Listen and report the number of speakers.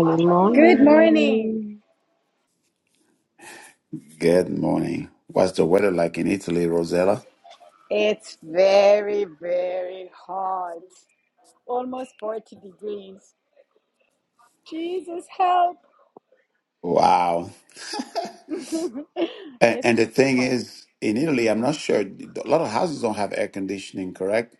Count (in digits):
3